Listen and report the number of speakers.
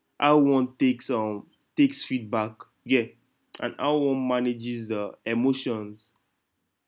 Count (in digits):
1